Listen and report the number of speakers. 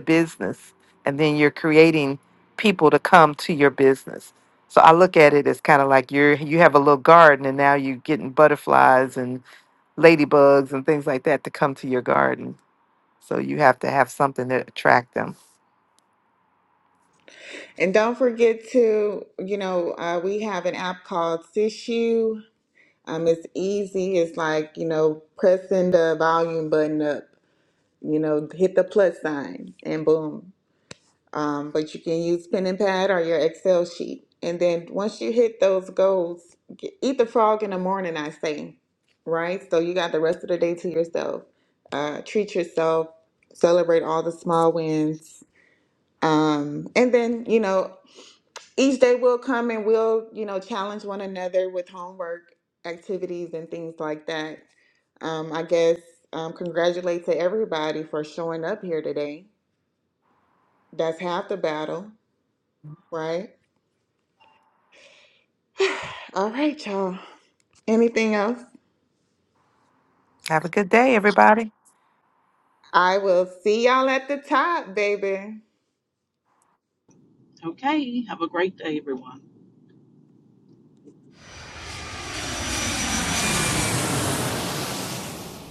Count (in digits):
3